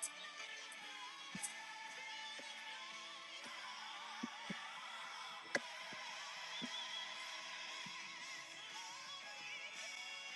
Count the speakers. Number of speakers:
0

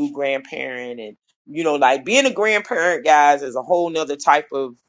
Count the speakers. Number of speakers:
1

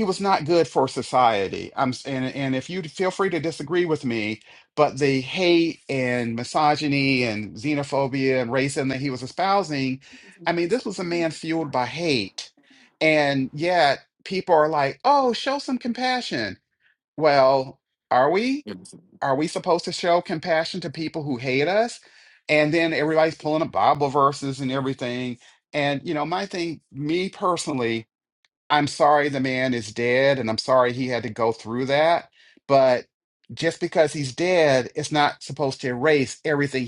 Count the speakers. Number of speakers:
1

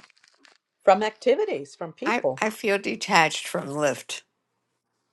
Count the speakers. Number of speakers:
2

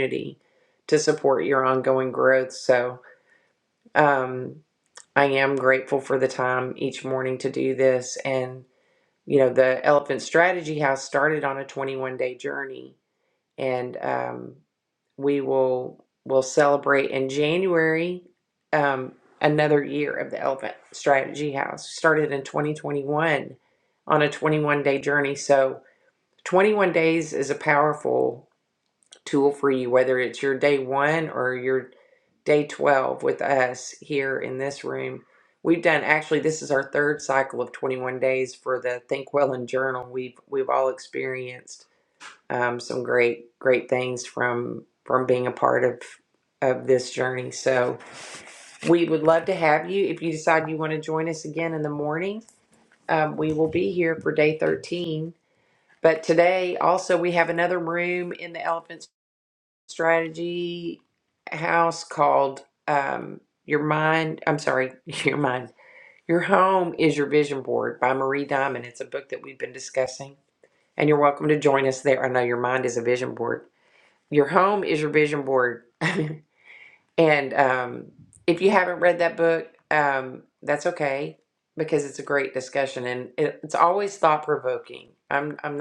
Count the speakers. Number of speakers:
1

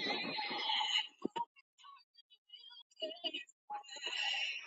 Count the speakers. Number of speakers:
0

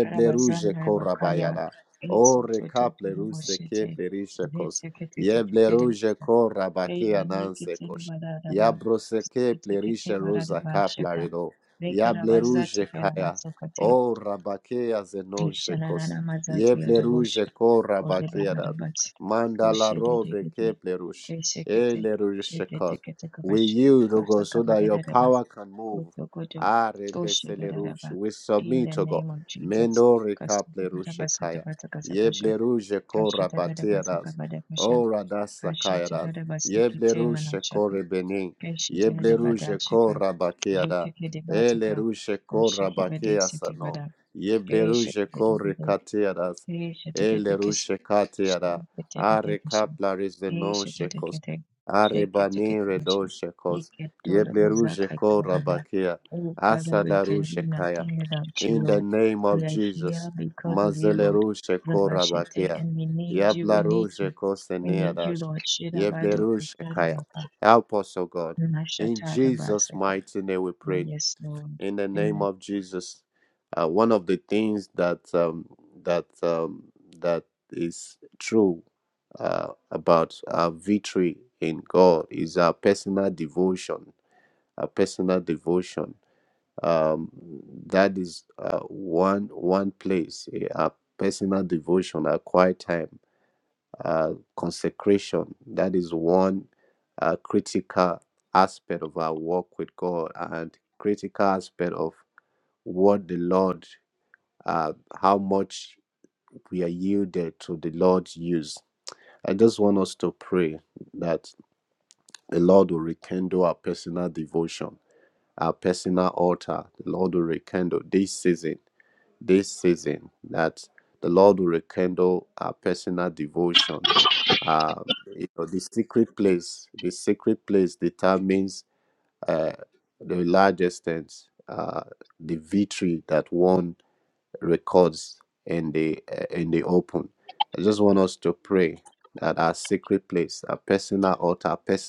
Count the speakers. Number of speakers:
2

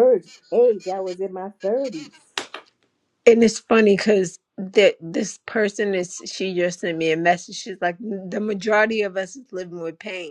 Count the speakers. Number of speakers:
2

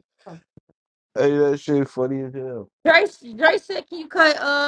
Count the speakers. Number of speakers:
2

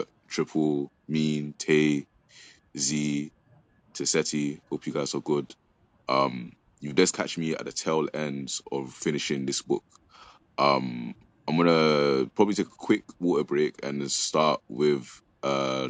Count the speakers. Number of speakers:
1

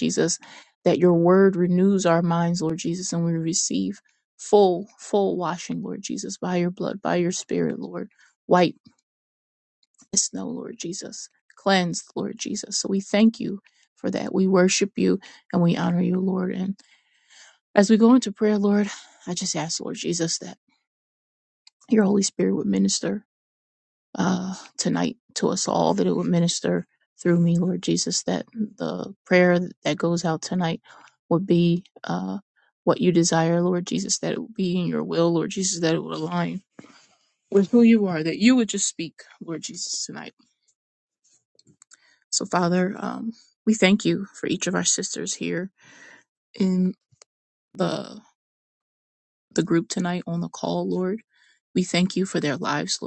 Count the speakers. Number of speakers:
1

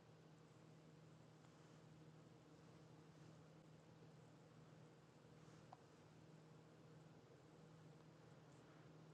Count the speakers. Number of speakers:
0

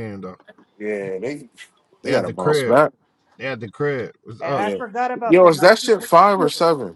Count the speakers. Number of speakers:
3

